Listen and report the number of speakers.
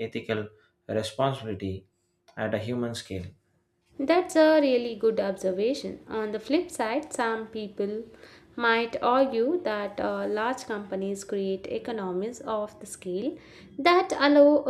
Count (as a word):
two